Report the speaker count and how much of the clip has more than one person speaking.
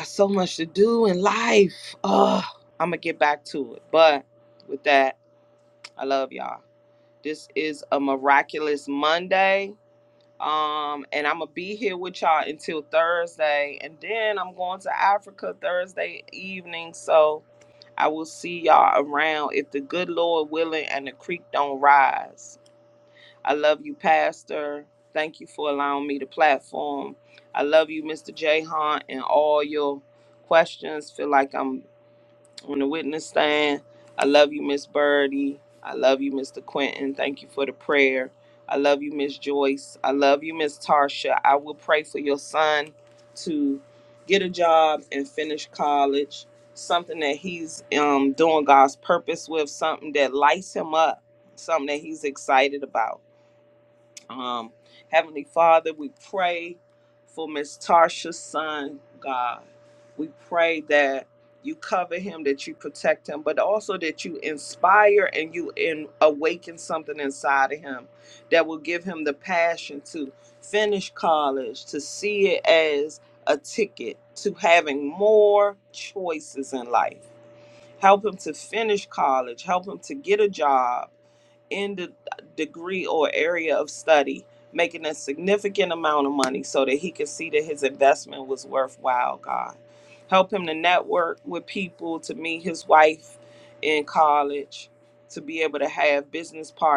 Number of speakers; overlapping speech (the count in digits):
1, no overlap